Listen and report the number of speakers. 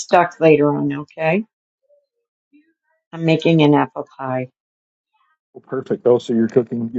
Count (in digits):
2